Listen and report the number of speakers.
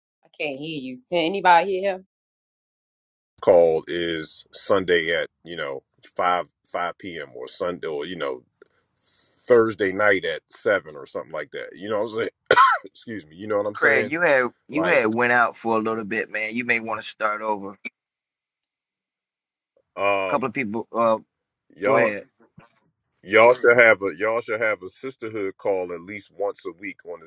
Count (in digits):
3